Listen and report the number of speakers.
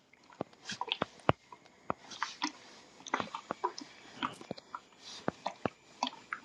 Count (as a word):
zero